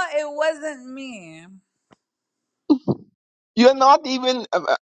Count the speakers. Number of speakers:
2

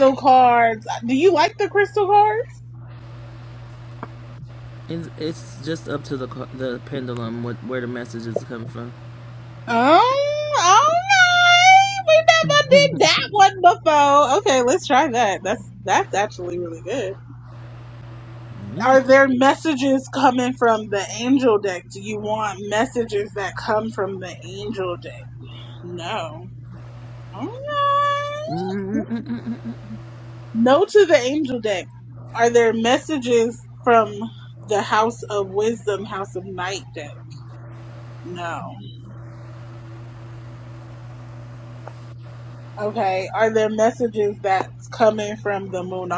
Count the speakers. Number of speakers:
2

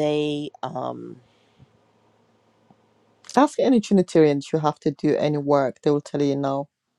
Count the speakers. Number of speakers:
2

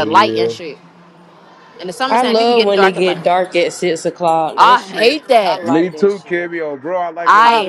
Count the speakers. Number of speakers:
3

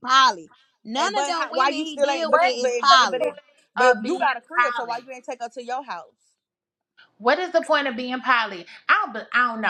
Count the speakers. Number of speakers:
3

